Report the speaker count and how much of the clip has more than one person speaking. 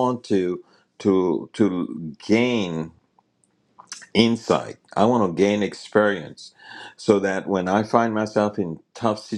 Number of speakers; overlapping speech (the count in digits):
1, no overlap